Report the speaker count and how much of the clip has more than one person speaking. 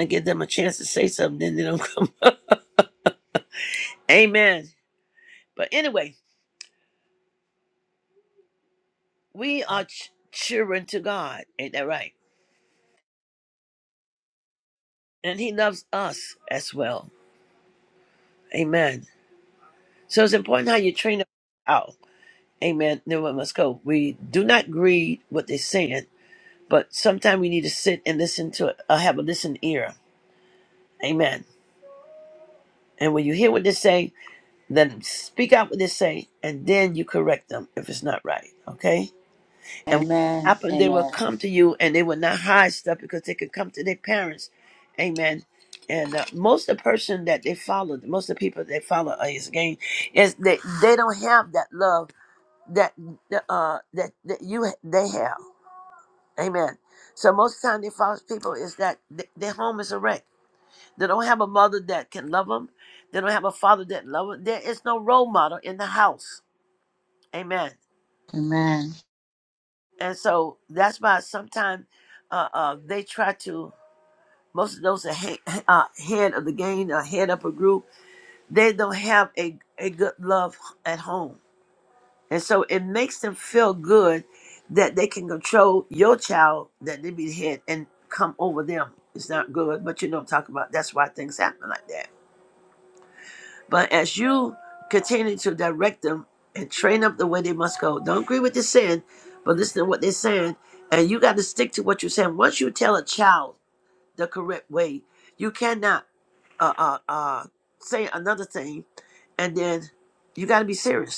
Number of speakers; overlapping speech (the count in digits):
2, about 1%